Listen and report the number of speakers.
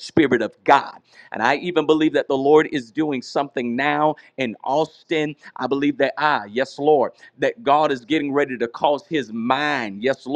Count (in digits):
1